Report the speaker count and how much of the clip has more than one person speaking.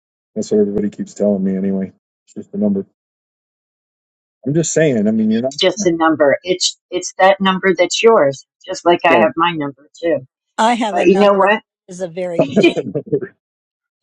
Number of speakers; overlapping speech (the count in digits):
3, about 7%